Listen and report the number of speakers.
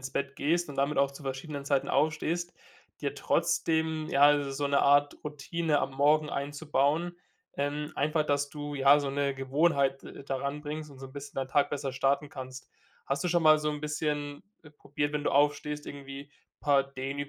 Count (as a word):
one